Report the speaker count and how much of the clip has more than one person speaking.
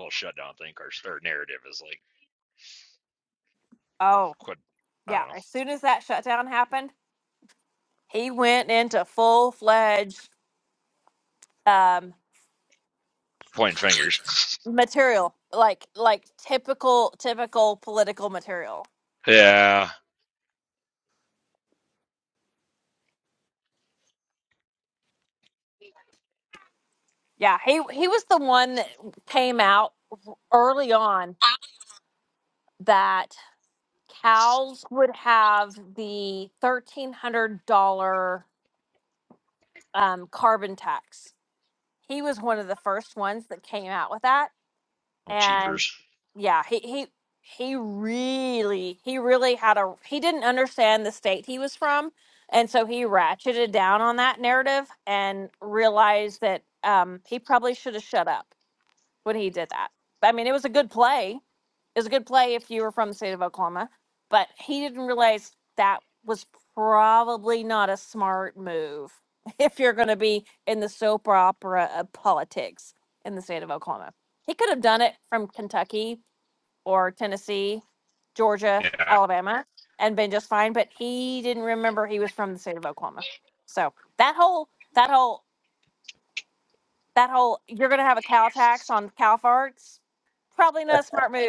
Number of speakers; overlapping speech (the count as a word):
two, about 1%